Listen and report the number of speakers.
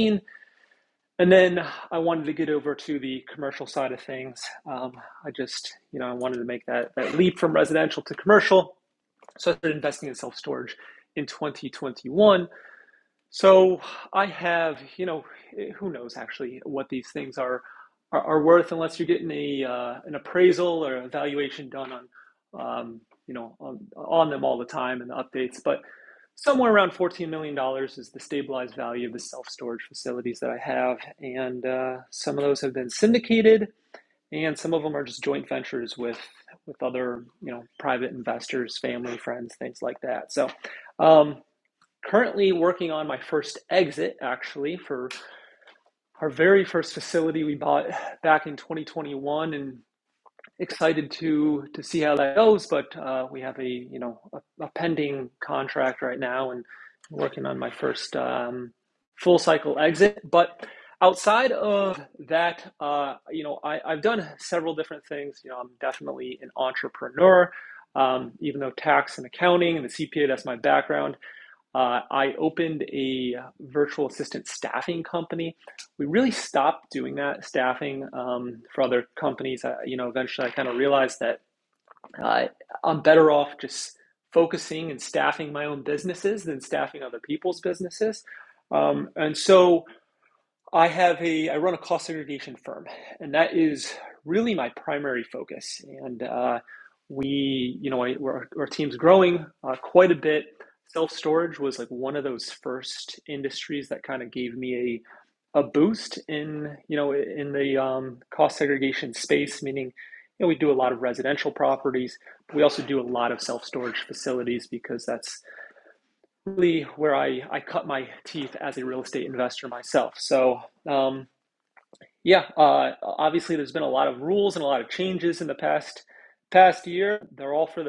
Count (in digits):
1